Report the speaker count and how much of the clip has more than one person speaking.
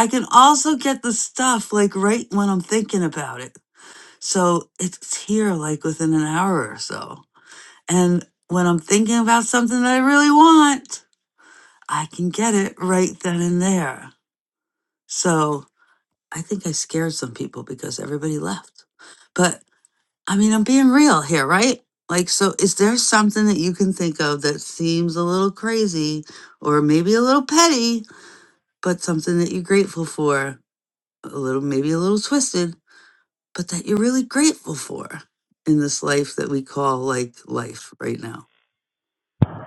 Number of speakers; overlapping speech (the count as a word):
one, no overlap